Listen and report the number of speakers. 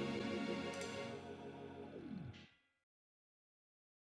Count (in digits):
0